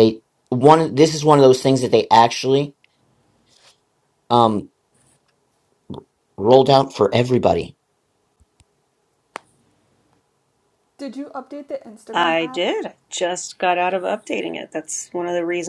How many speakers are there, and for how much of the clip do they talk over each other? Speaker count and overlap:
3, about 4%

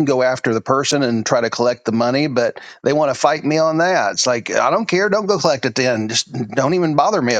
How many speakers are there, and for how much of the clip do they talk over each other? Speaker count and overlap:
1, no overlap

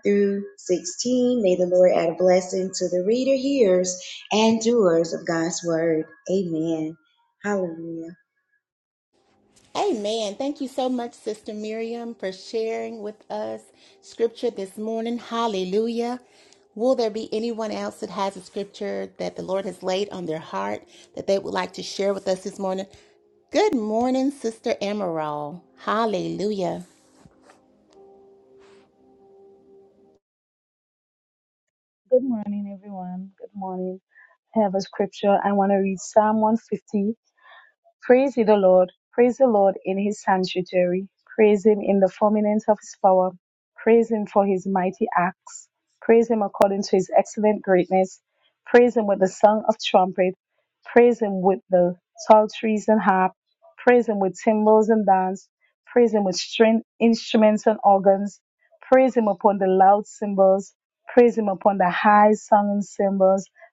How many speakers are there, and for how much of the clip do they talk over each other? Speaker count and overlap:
3, no overlap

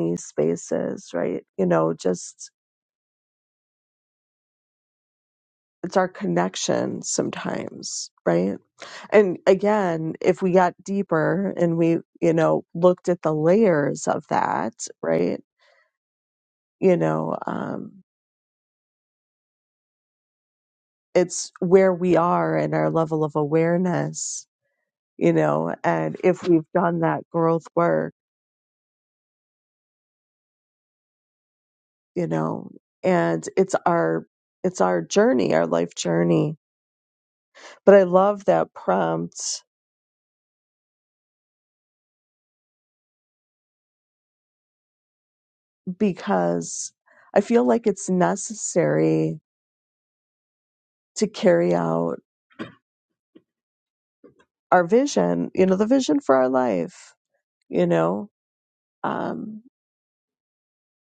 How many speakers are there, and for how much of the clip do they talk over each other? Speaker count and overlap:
1, no overlap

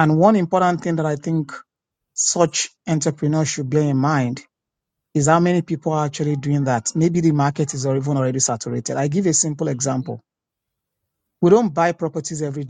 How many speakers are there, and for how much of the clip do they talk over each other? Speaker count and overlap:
1, no overlap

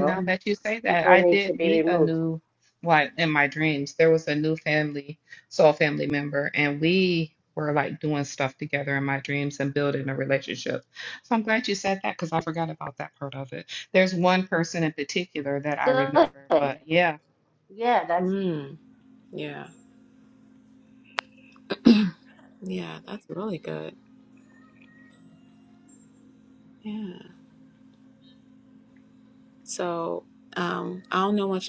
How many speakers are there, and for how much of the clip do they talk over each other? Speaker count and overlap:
3, about 6%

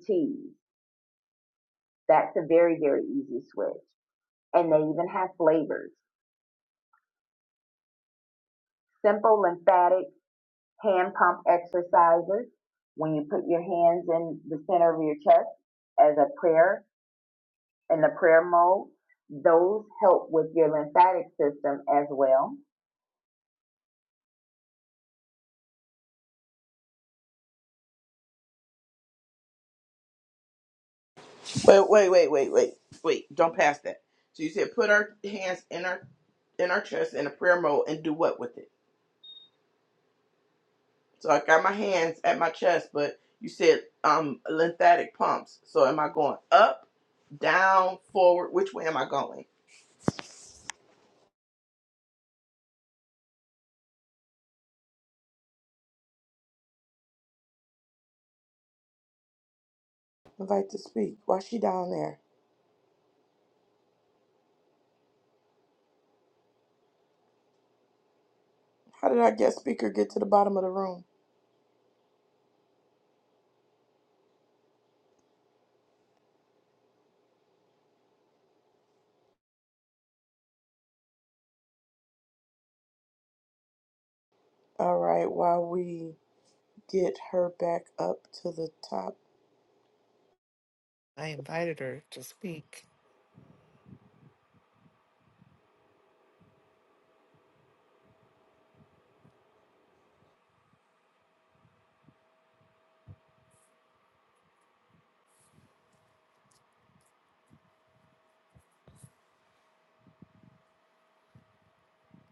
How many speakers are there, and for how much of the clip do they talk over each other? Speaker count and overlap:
3, no overlap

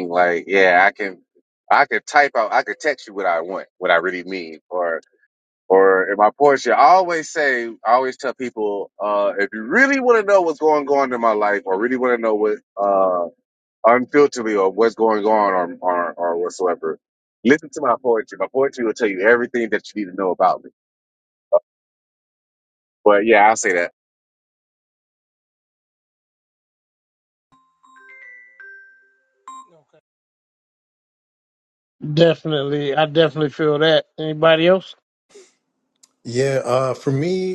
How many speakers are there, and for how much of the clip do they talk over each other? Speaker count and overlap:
3, no overlap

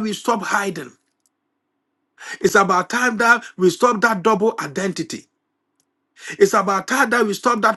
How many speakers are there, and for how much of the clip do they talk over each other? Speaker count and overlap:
1, no overlap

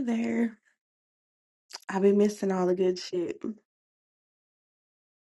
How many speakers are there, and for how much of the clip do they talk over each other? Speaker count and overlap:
1, no overlap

